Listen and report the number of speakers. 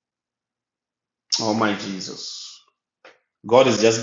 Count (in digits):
1